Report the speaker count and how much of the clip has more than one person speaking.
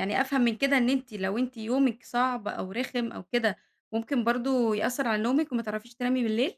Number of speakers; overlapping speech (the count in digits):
1, no overlap